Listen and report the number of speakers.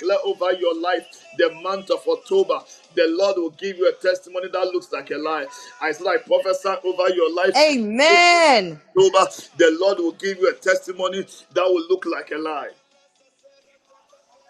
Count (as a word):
two